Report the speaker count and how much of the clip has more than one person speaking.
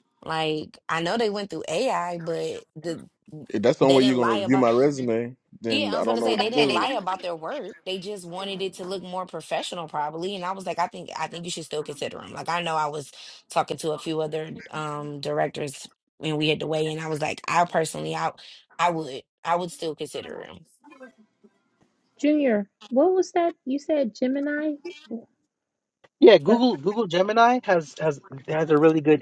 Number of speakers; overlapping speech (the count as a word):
four, about 7%